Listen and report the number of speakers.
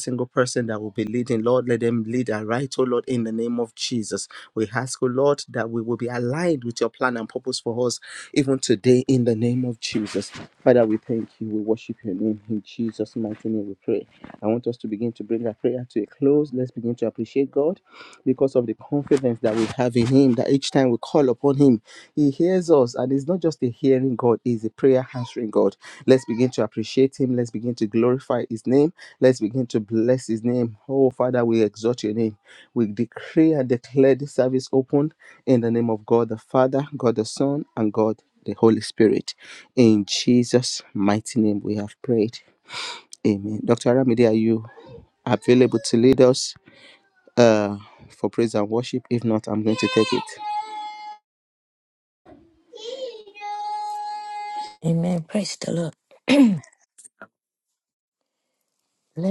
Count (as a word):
two